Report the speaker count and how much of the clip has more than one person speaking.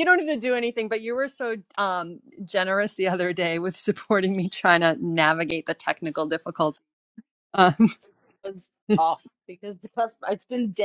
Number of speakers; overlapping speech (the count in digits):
2, no overlap